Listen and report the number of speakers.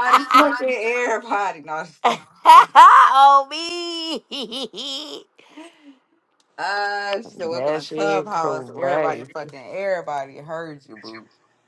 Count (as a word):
two